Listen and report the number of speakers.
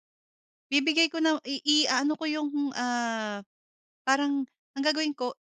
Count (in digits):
1